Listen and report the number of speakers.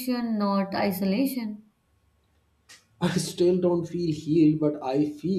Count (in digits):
2